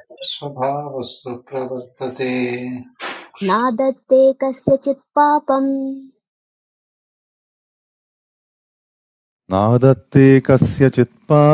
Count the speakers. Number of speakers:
three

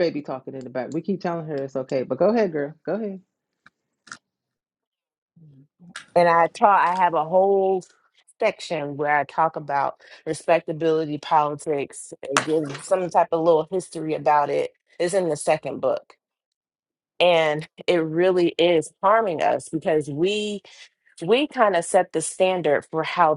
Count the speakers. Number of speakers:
two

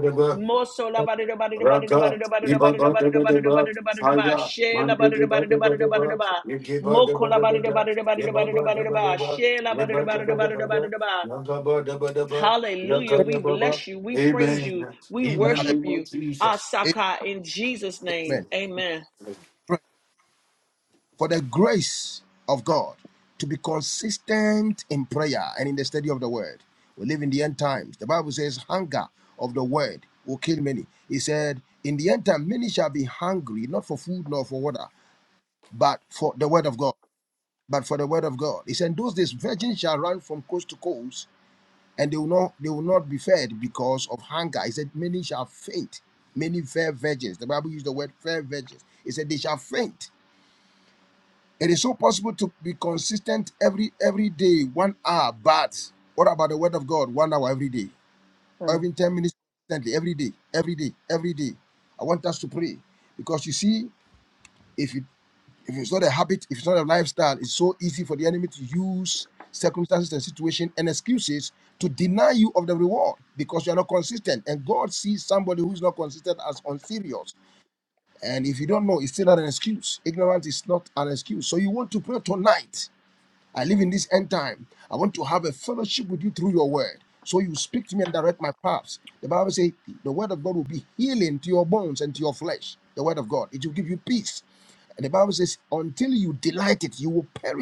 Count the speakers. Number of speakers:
three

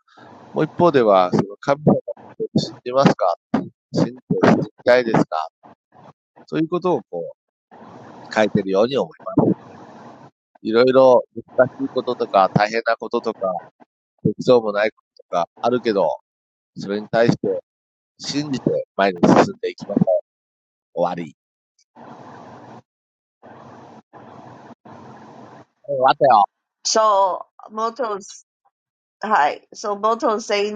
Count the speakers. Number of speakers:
two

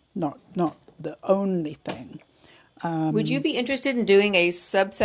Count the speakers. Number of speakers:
two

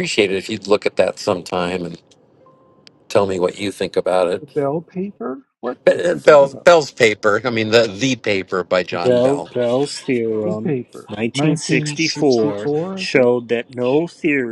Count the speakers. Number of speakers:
three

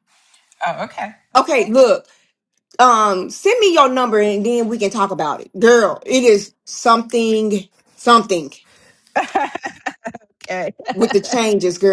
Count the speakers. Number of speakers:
two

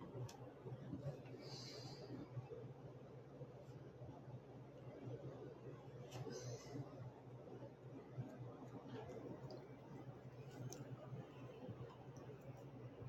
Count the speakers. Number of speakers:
zero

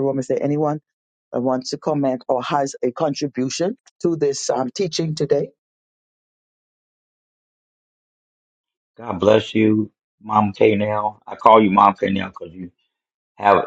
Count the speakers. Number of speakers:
two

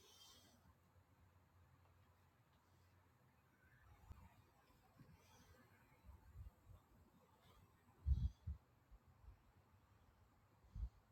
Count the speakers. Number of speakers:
zero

